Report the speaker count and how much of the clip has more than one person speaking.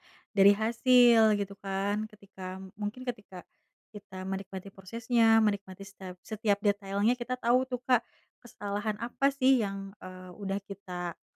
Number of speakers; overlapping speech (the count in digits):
1, no overlap